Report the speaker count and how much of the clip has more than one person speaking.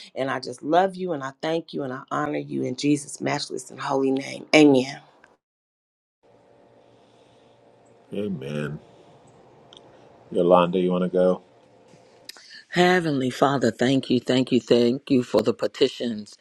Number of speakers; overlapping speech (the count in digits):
3, no overlap